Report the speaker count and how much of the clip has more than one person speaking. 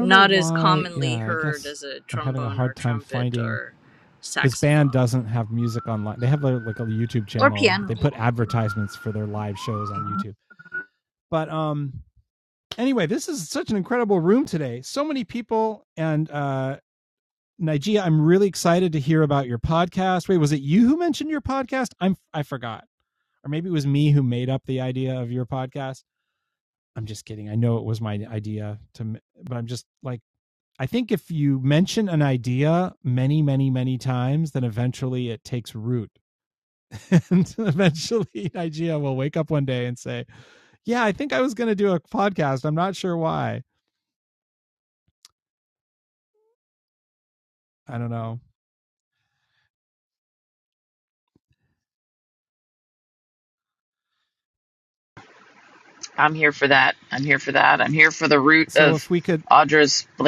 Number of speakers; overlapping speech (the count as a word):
three, about 8%